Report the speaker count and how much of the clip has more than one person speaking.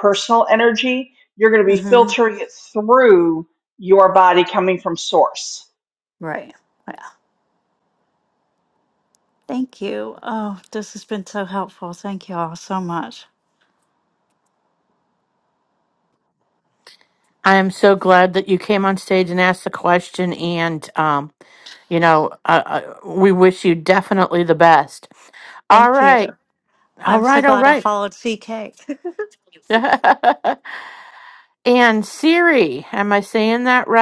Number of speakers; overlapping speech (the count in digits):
3, about 5%